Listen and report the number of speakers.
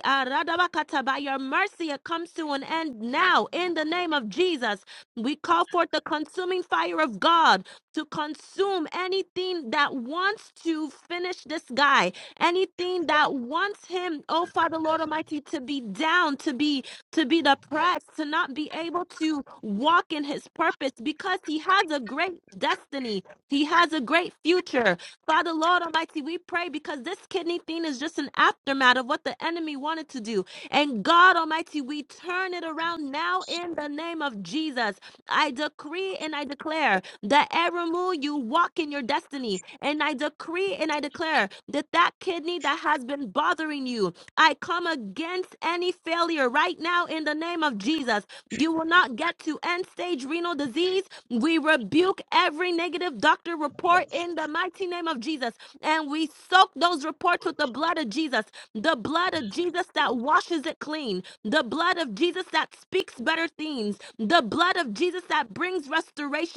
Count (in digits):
1